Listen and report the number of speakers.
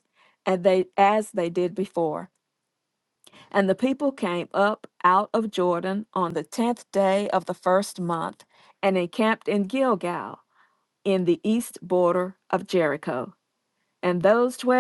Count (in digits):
1